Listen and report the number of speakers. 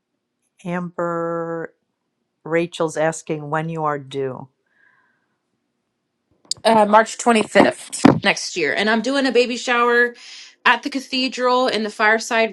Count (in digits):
2